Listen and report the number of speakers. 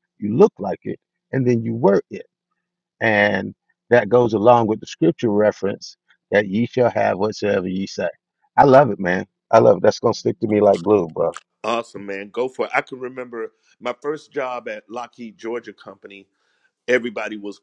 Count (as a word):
two